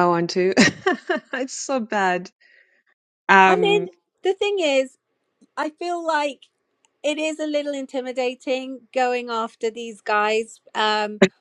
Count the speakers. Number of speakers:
2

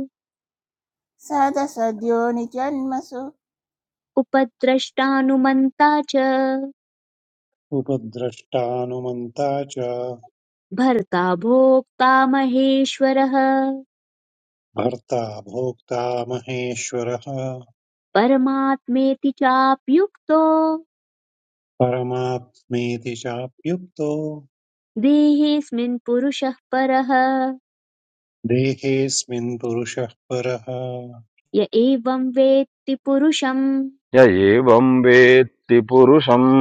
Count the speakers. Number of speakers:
4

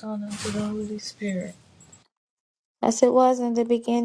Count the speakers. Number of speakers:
2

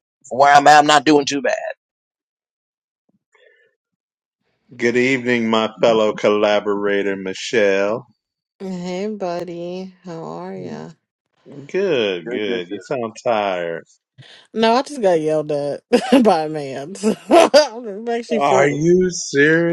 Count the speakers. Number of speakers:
3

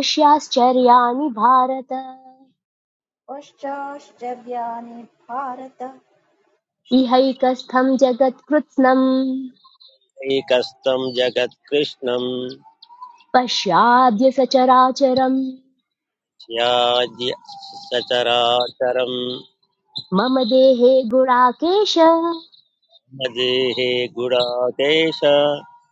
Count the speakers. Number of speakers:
3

